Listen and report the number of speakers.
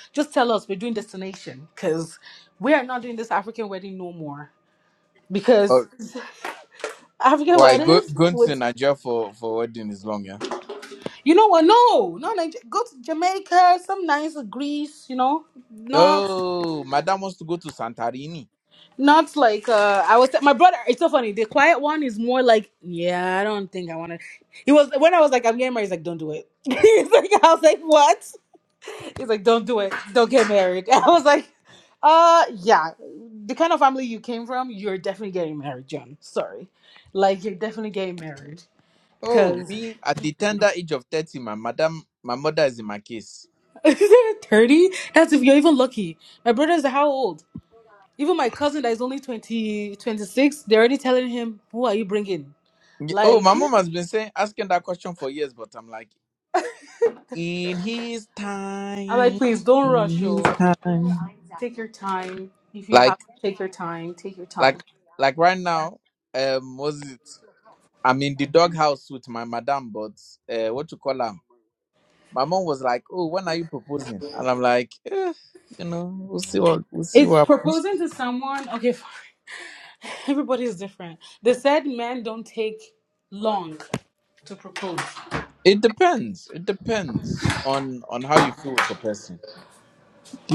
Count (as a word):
two